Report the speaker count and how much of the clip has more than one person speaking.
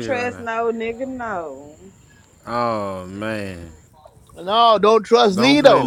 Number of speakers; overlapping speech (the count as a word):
three, about 17%